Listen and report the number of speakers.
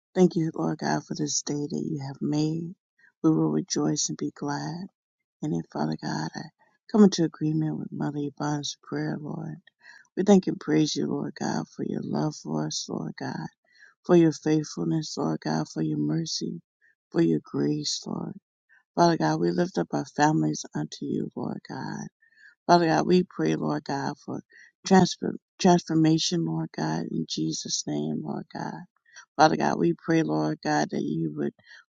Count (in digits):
1